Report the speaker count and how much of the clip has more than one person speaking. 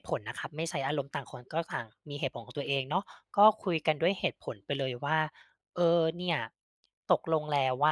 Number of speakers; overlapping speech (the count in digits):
1, no overlap